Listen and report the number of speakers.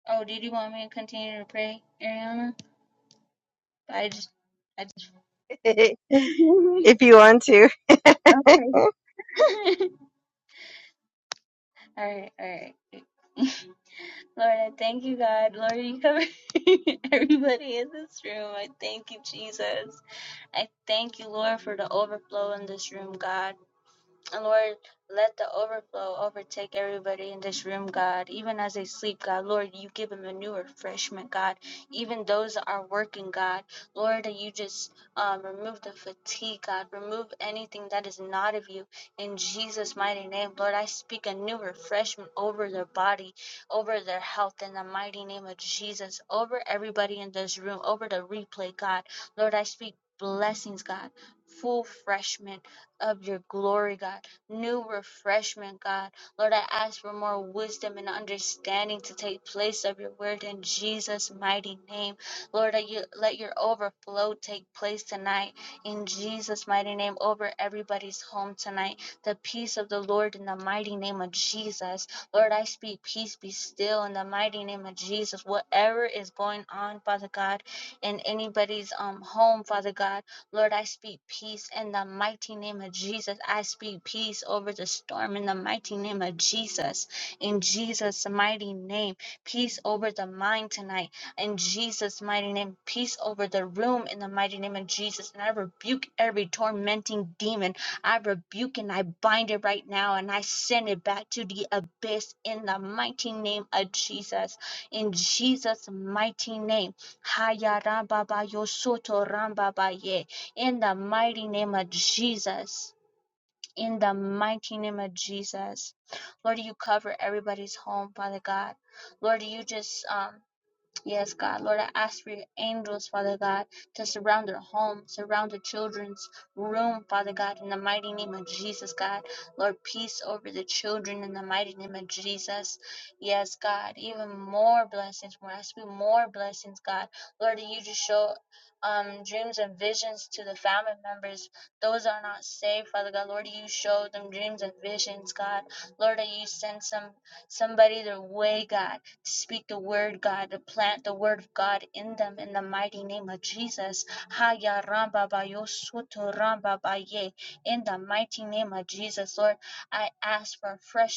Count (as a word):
two